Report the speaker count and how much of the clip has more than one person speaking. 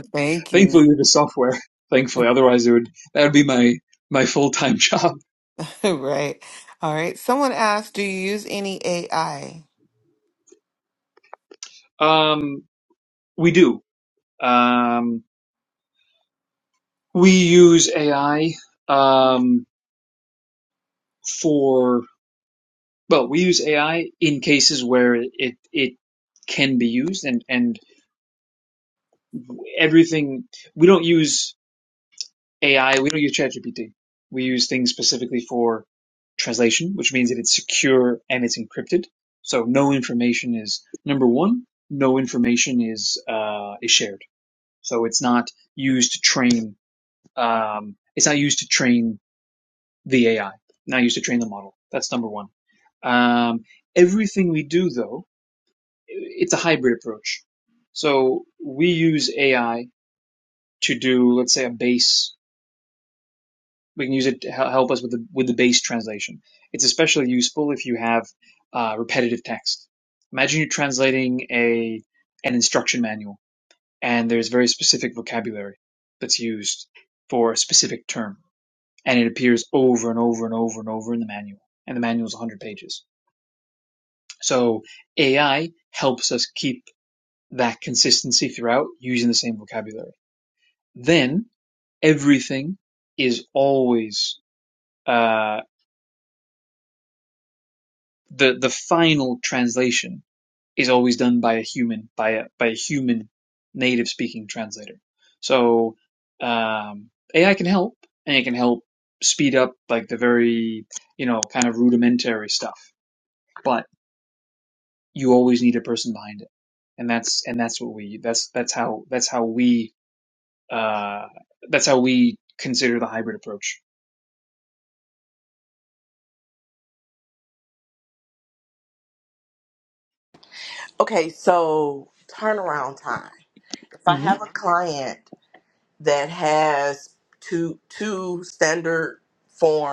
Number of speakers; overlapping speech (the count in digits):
3, under 1%